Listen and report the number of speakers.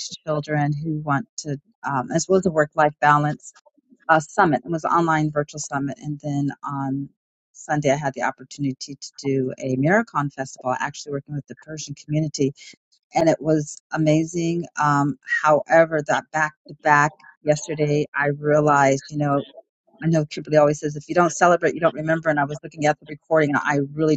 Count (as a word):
one